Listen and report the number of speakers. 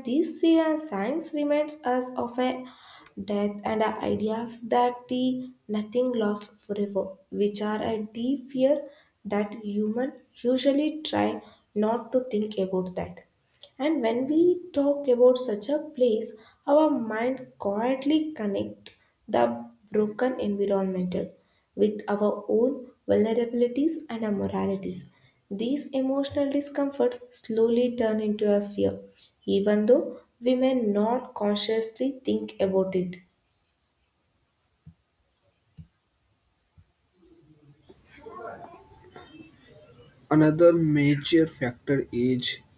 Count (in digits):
2